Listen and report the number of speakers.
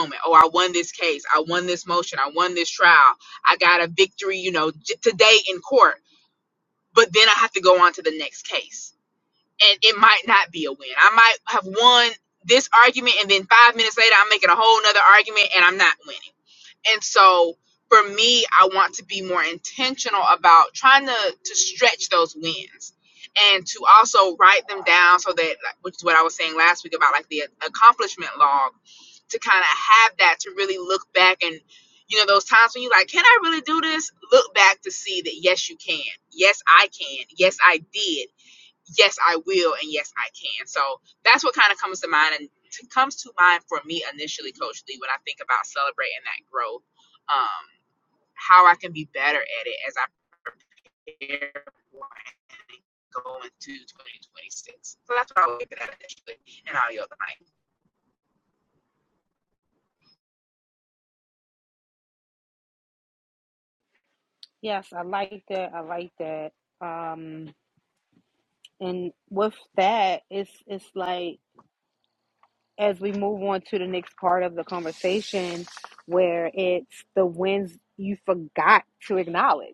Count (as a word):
two